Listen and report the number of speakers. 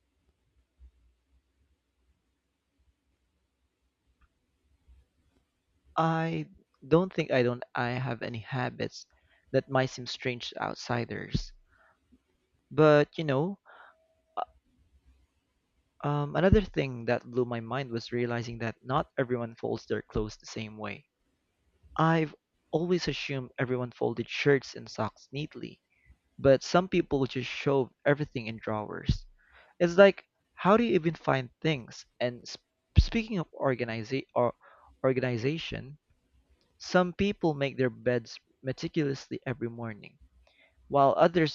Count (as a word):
one